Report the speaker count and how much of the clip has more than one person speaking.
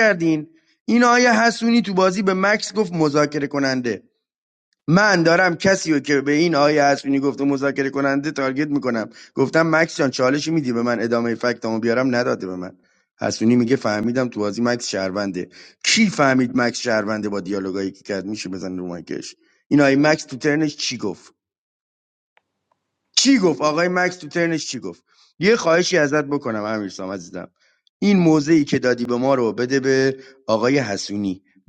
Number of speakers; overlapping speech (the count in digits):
1, no overlap